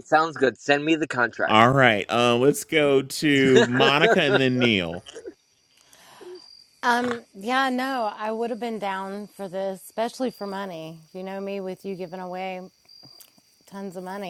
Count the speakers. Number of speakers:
3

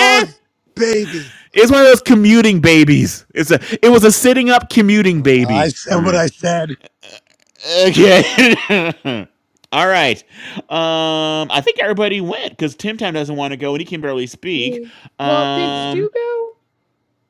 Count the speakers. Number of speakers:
3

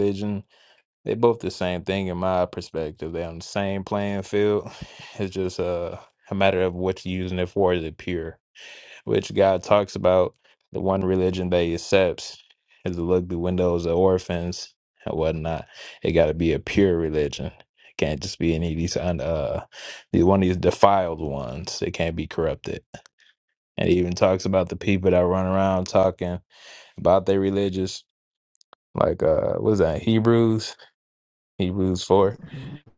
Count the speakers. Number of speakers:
1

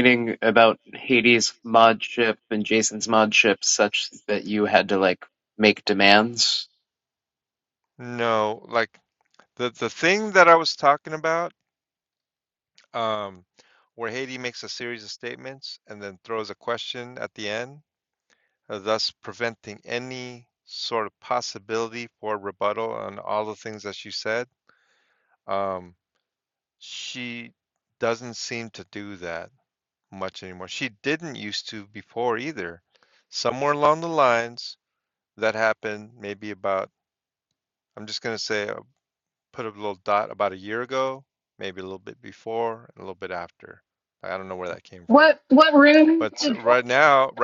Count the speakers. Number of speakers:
3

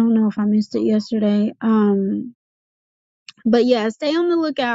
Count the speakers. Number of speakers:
1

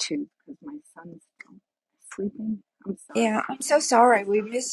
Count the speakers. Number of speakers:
2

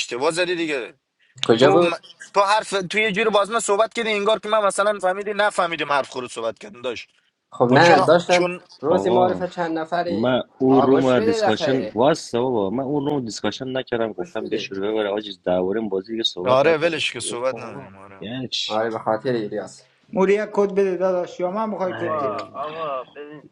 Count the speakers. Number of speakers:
5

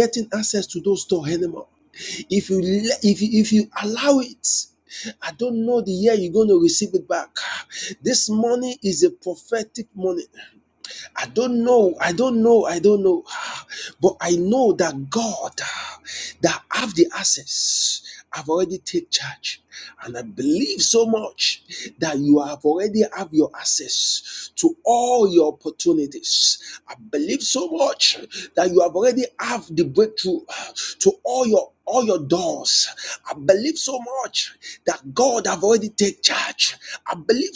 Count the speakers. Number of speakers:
1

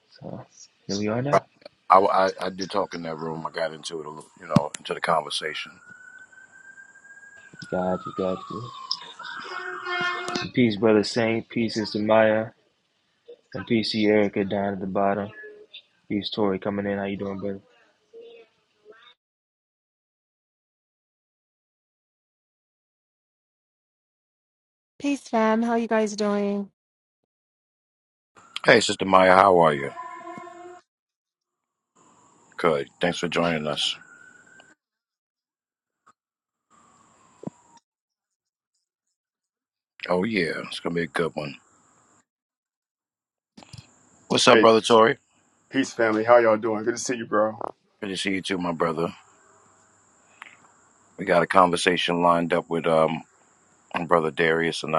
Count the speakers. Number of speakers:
4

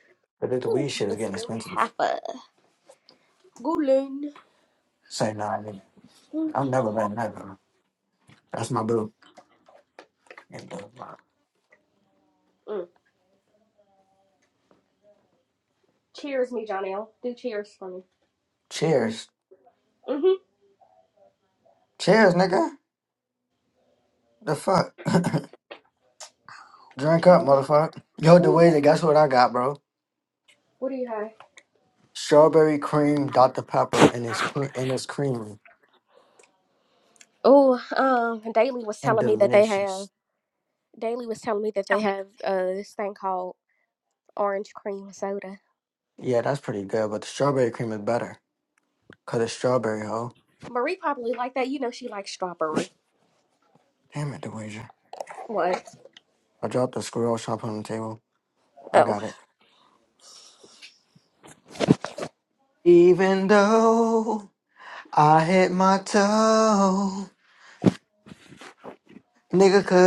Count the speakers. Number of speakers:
2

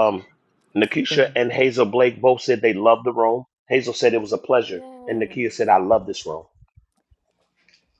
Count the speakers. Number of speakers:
1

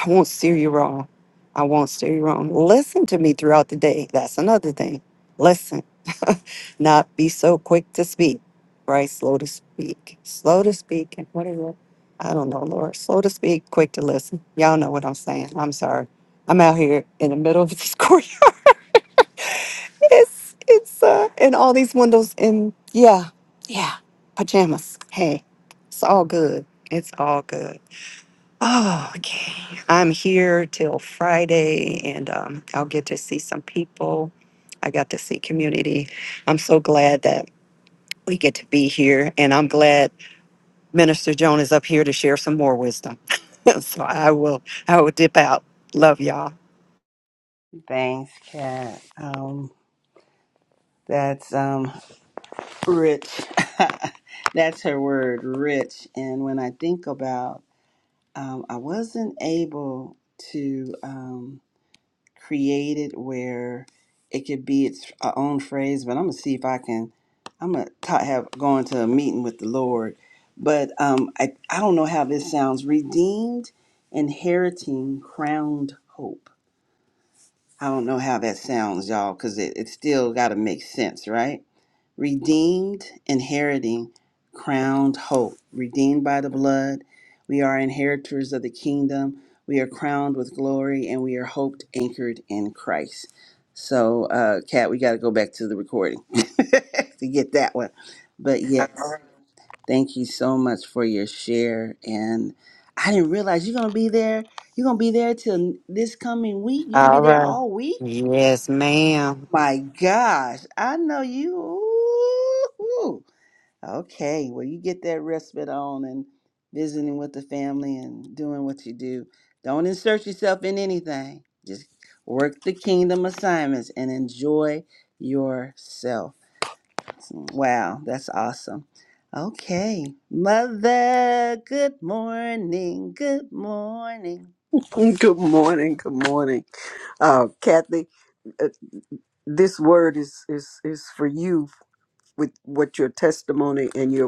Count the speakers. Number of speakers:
3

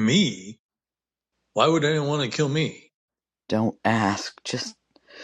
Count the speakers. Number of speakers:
2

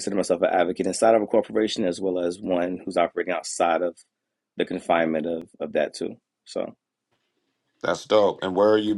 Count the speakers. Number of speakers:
2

